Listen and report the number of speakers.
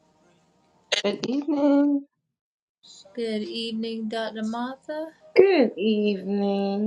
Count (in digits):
3